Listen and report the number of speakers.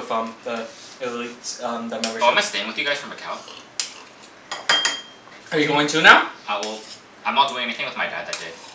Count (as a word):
two